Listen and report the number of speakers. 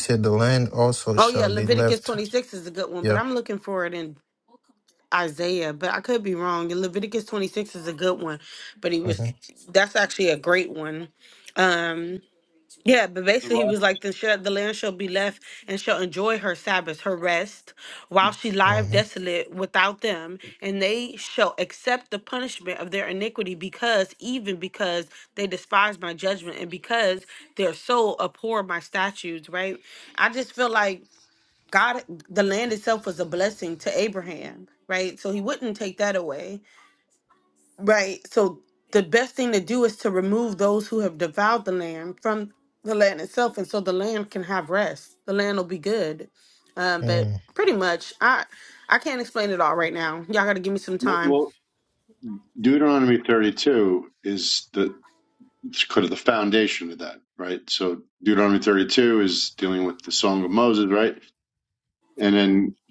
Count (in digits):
3